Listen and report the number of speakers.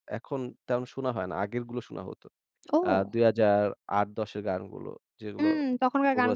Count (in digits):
2